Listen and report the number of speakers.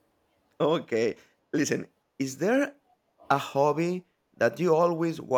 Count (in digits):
1